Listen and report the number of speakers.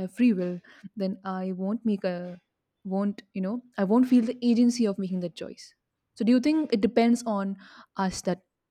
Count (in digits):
1